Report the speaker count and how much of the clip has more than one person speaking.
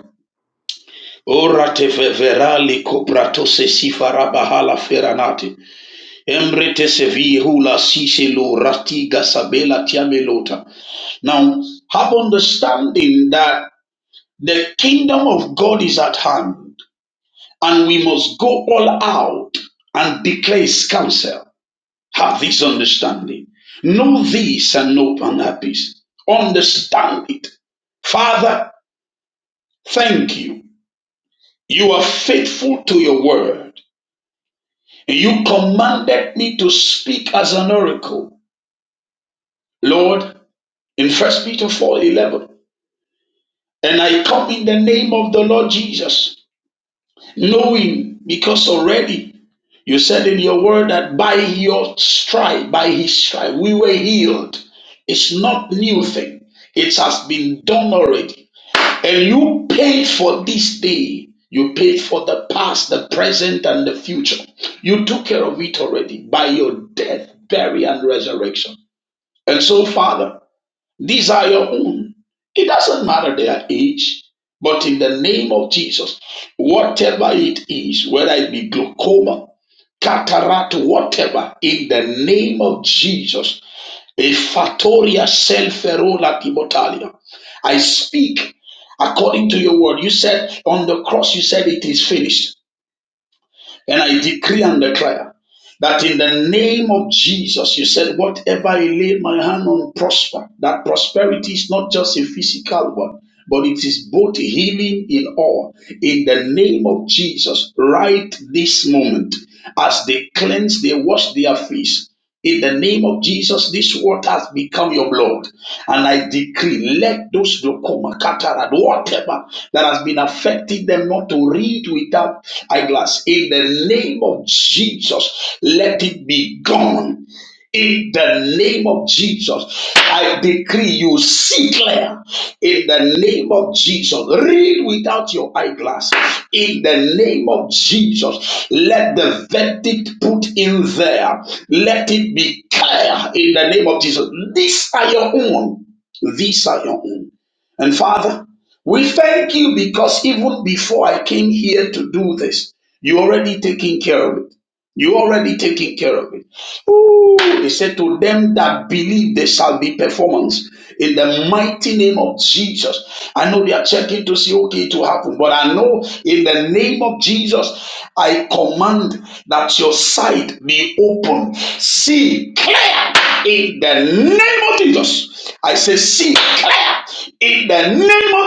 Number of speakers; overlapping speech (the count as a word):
one, no overlap